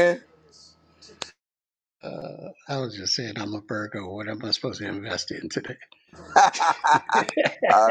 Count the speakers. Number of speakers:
2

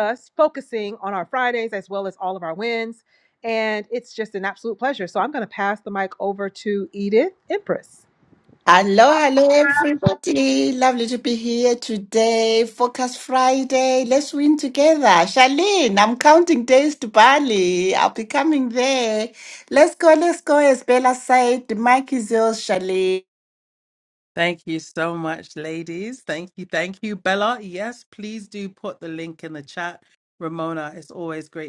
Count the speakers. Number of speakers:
3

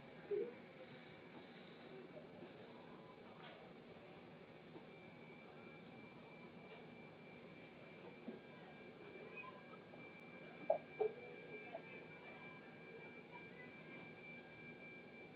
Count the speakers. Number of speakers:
0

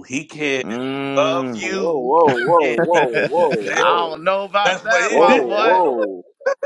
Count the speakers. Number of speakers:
3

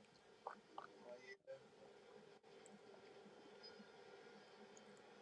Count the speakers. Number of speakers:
0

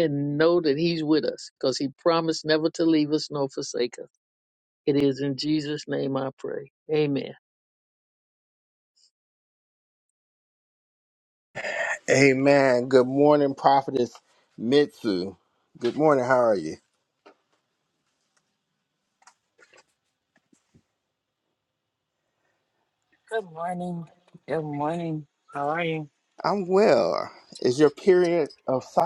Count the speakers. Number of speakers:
3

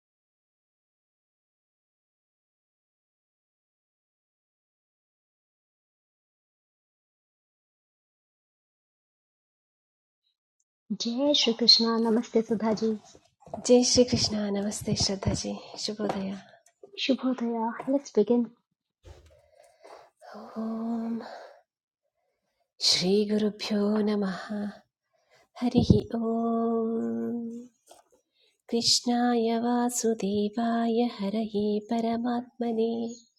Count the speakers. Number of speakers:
2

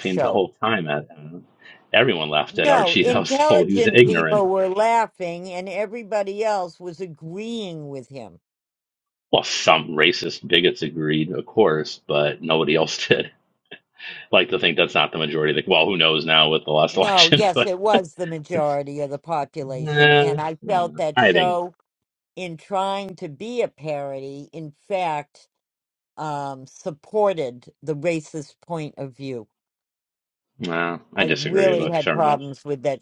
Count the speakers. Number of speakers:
2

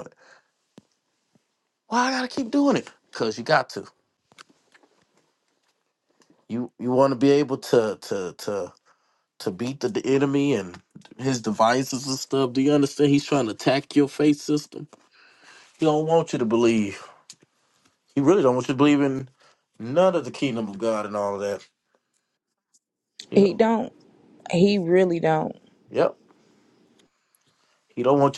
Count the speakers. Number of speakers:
2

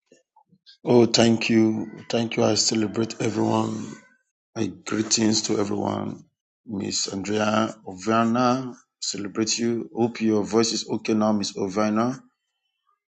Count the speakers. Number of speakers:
1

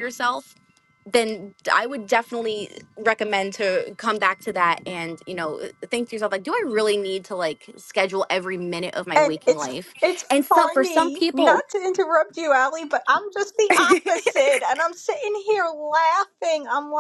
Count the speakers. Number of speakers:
2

